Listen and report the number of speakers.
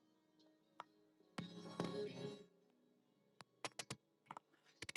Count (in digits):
0